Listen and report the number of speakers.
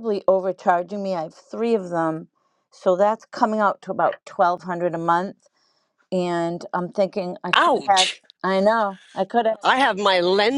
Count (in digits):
2